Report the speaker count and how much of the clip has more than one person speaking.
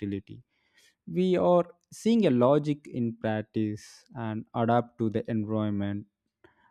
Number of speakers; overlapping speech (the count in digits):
1, no overlap